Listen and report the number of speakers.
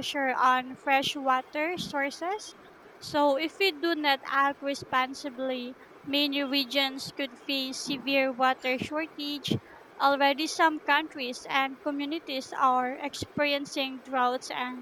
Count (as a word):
one